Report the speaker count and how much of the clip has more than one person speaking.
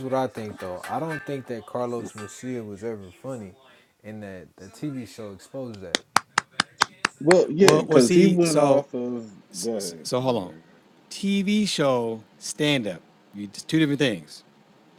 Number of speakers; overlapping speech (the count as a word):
three, about 11%